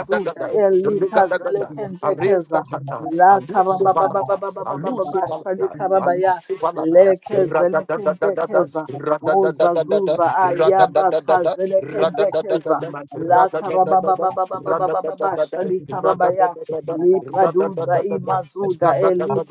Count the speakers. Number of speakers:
2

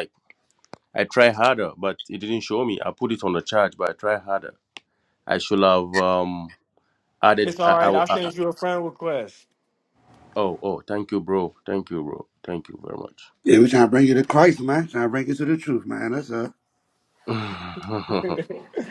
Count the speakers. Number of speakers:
3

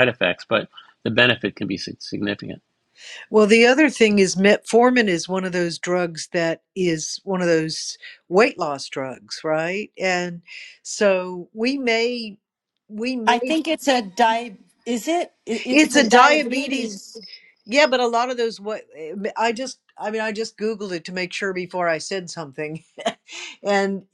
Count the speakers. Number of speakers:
3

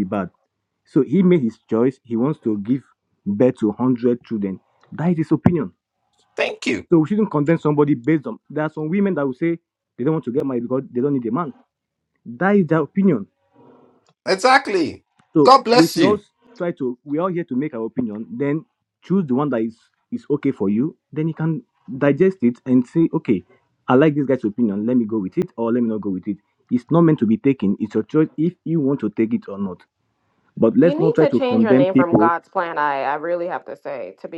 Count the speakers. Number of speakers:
3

